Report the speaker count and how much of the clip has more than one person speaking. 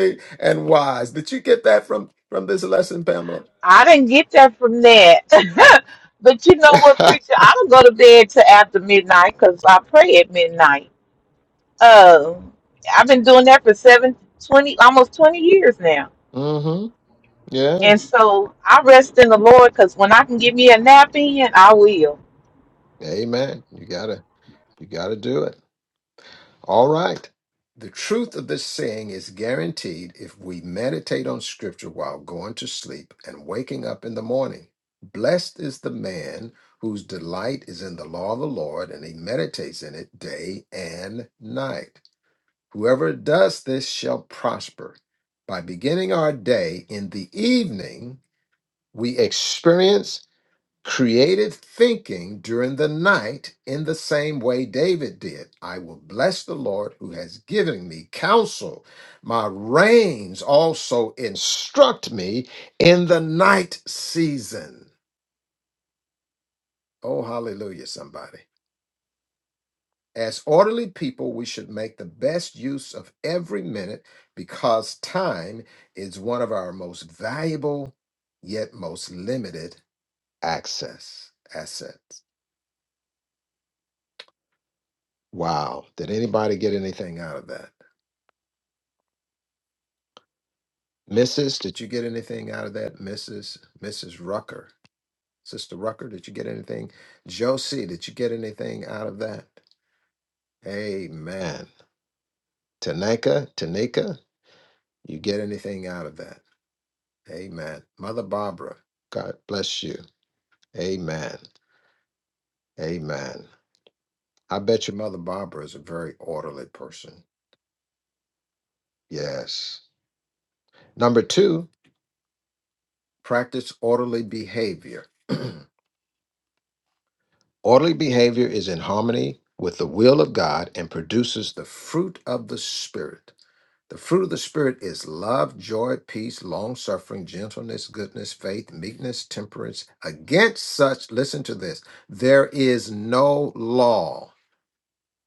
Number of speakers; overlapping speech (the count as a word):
two, under 1%